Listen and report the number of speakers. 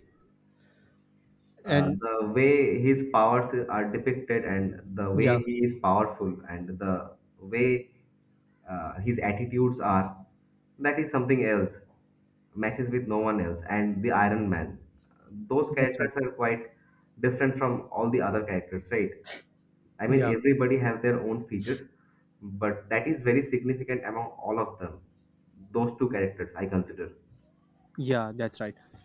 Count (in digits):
2